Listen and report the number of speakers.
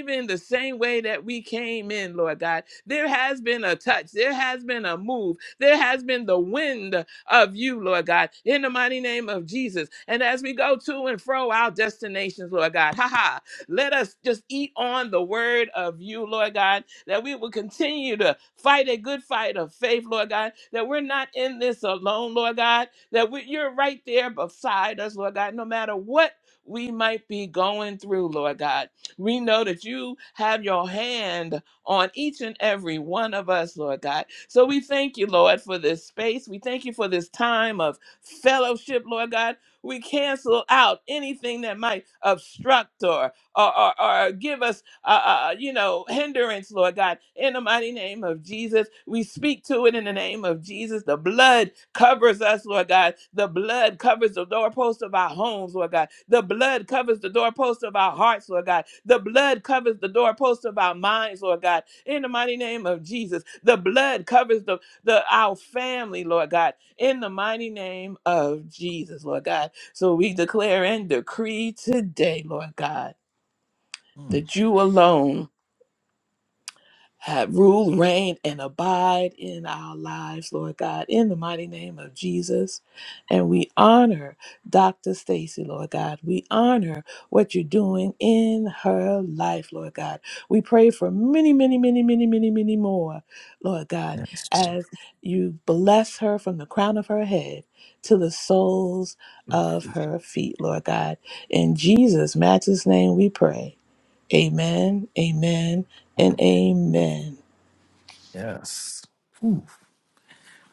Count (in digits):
2